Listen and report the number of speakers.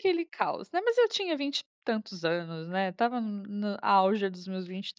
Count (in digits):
1